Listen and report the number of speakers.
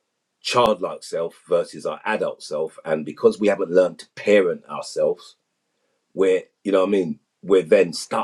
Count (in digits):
1